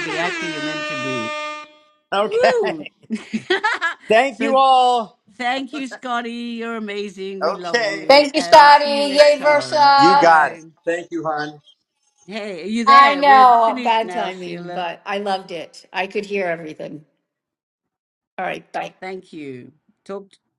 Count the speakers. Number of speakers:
three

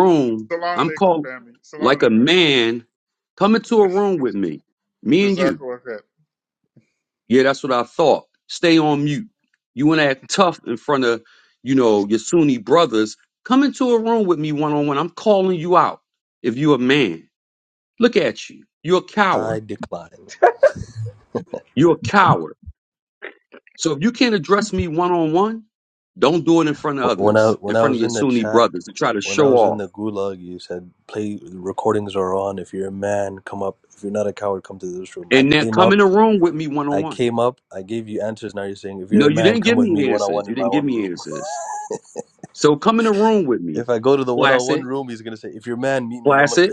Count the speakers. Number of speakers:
three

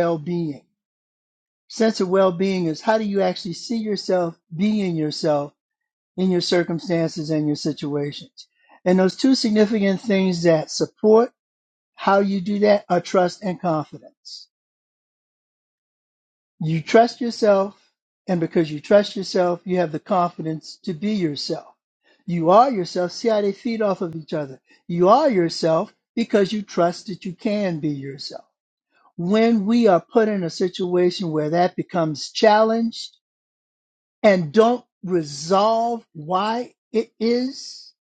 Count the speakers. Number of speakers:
one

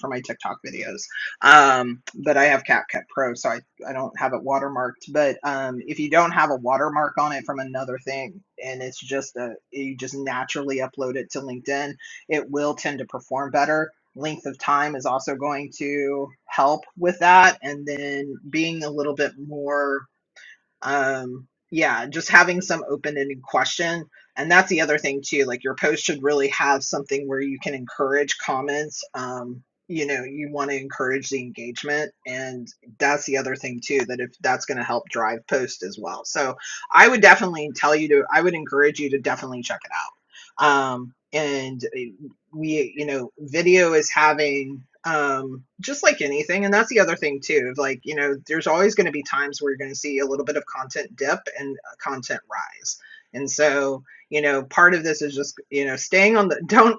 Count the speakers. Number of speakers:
one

